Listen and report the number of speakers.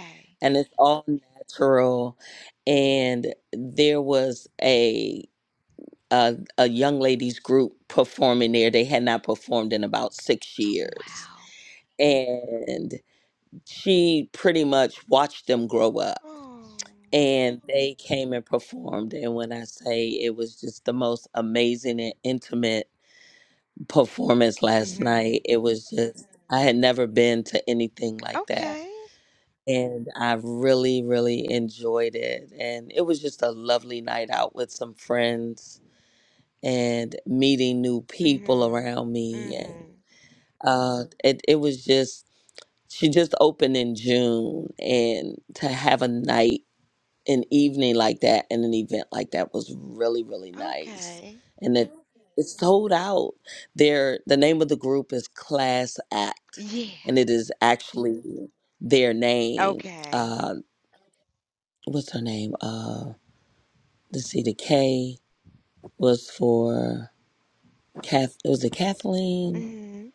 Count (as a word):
two